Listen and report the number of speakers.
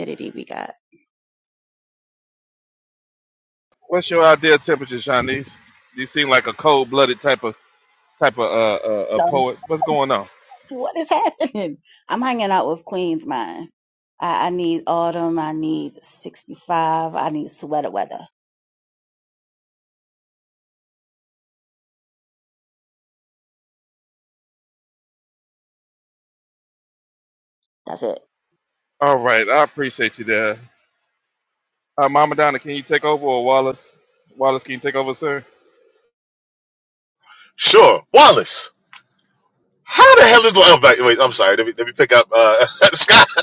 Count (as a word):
three